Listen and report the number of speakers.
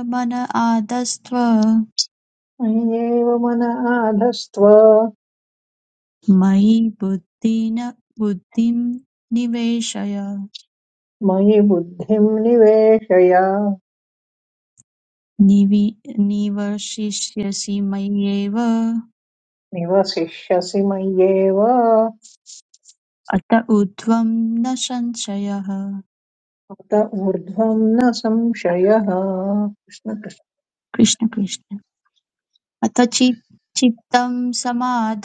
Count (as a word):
two